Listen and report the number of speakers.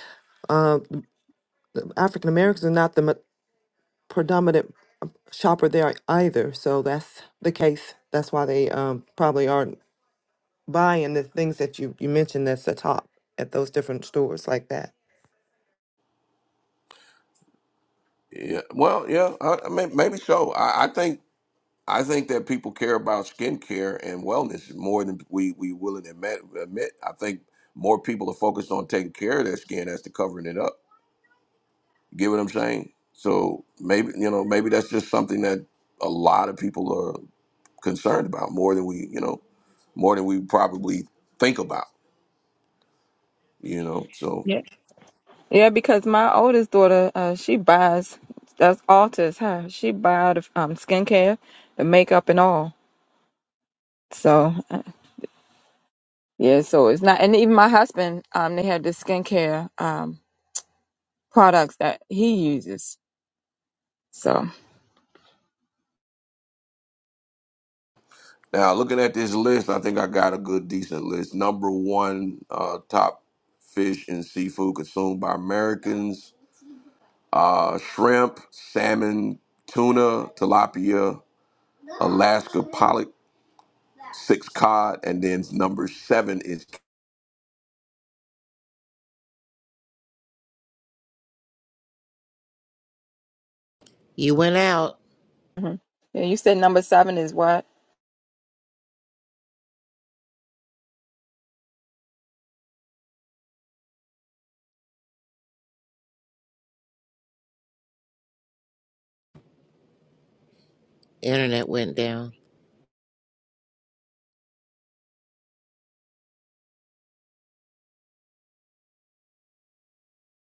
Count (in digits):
4